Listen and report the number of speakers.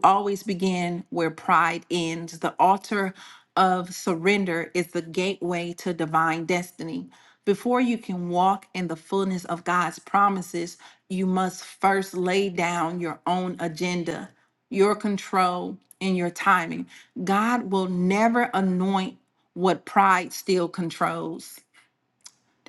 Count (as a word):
one